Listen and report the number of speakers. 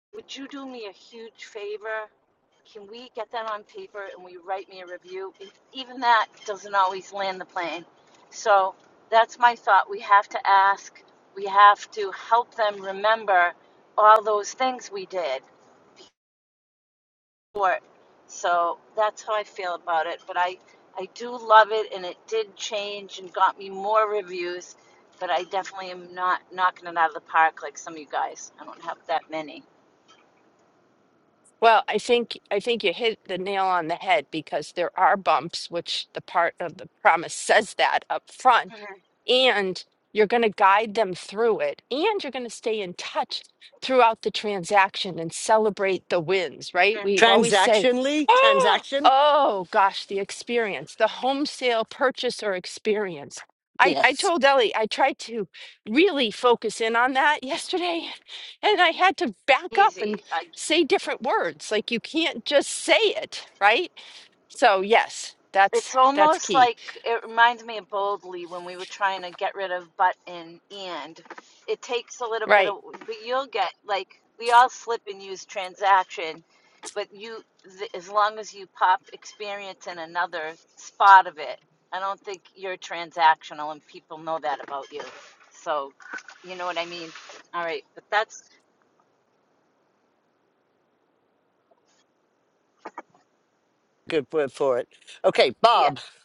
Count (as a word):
three